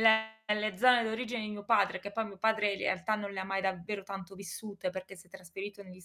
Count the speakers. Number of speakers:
1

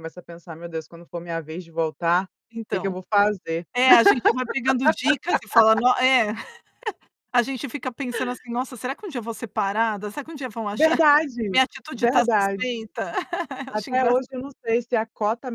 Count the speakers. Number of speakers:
2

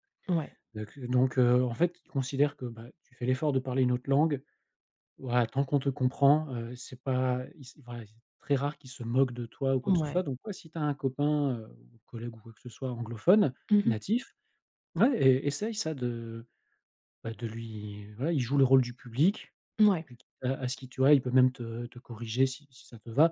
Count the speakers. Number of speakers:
2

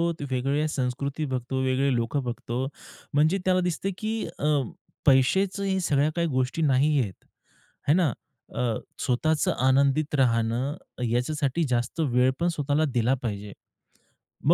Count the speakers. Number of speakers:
1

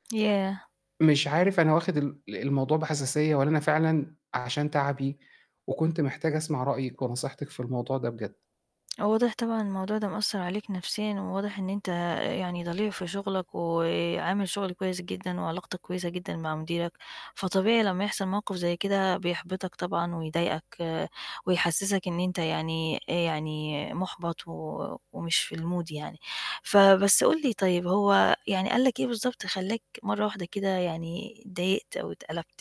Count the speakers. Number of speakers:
2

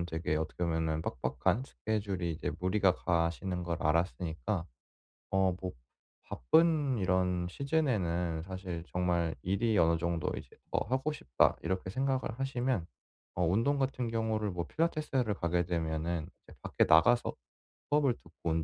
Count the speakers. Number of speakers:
1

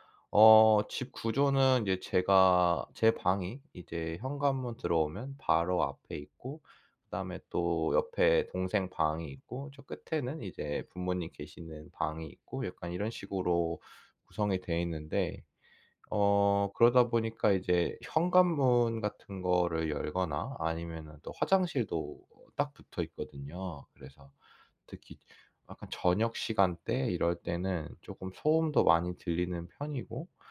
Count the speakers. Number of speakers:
1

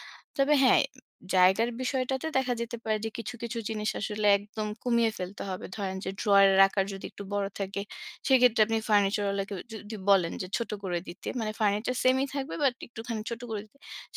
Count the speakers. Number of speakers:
1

